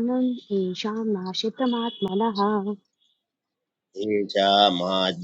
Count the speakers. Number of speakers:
two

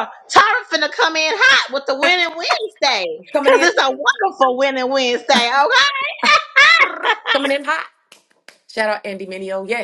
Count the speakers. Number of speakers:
two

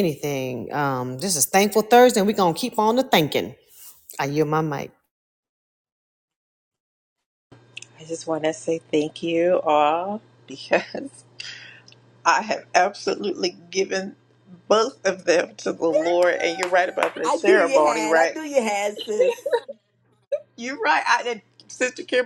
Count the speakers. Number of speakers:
three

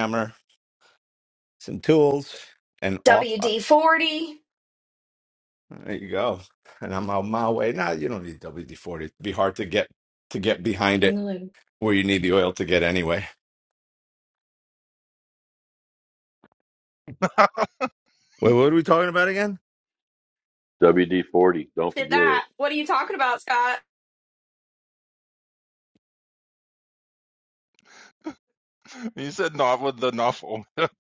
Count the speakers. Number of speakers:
four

